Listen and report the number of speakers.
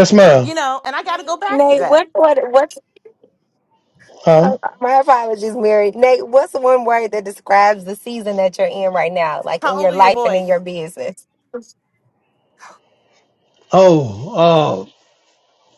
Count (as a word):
three